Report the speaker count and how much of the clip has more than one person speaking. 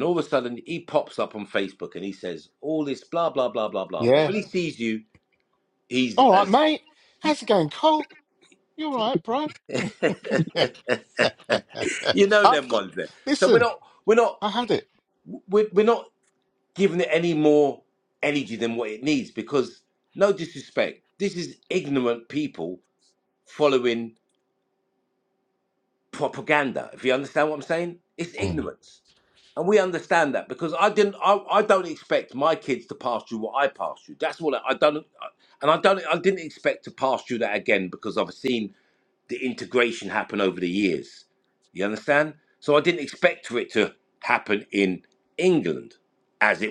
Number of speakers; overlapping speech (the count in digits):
2, about 3%